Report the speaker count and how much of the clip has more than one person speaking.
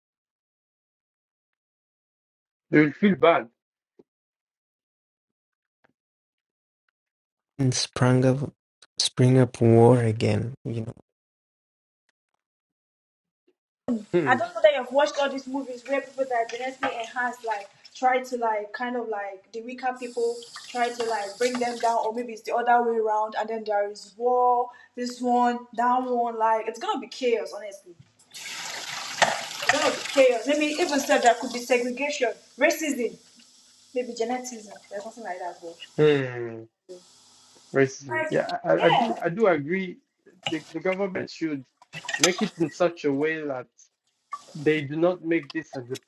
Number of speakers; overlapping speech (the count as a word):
three, about 2%